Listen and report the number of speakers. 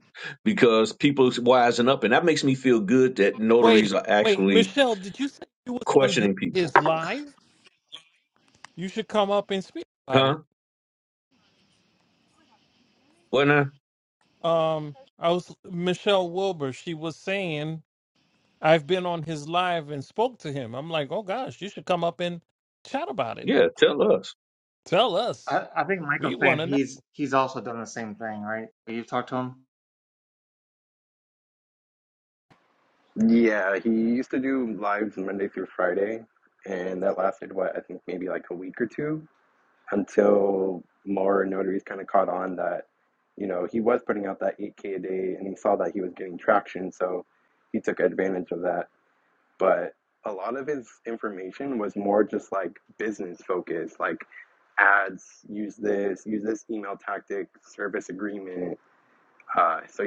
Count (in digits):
4